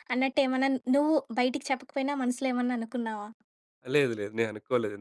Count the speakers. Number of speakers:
2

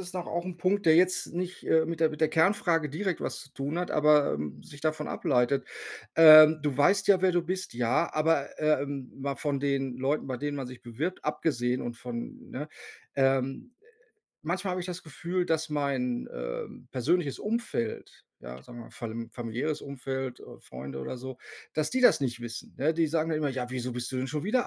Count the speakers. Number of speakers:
1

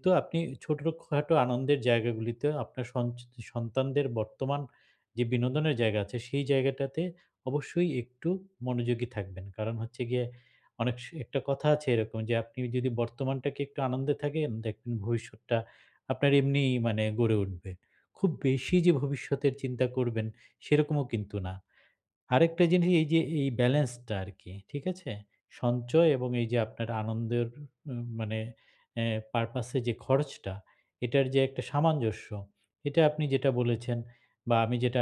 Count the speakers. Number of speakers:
1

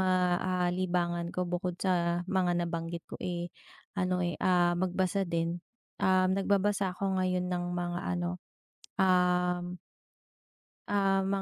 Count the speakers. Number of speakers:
1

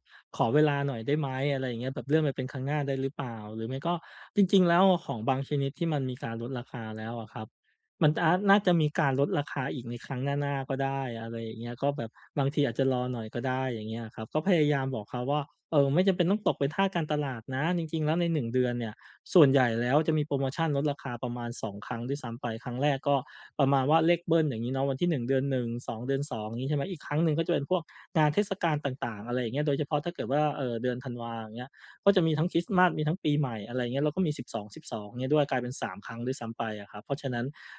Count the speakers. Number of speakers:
1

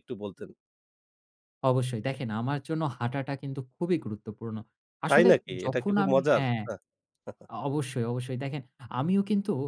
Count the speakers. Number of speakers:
2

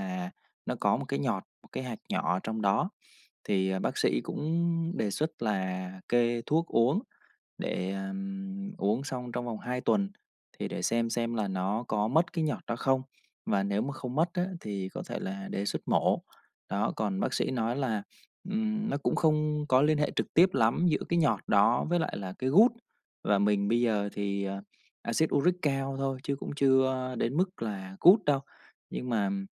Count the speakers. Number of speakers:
1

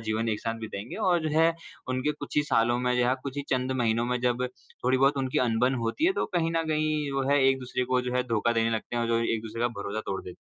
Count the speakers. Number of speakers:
1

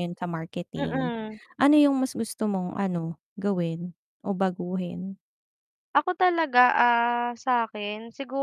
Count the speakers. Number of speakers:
2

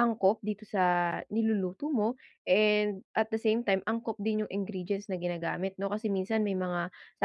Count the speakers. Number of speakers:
1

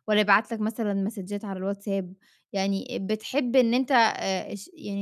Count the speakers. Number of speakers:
1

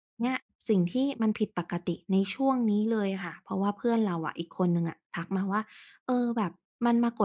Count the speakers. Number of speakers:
1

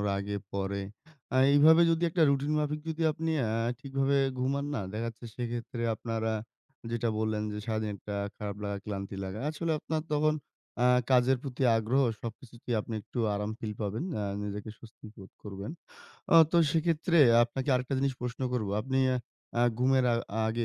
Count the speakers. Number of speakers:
1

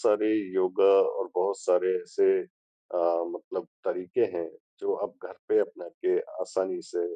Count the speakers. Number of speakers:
1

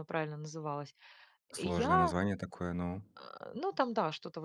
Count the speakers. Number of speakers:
2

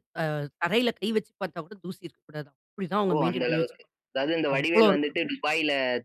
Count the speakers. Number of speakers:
2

